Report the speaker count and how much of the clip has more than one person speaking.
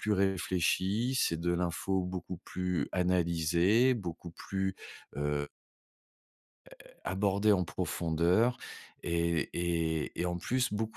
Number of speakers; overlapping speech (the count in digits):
1, no overlap